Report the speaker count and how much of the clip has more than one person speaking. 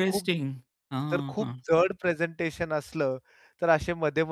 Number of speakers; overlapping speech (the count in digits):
2, about 15%